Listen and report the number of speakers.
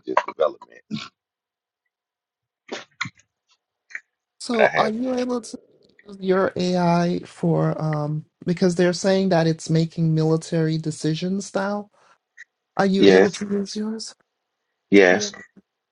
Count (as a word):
two